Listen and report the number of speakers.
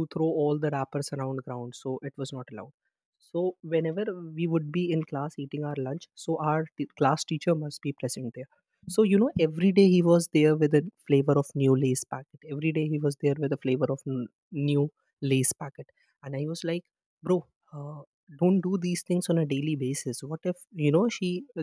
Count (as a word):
one